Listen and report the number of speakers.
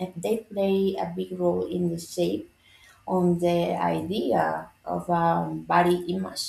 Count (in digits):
1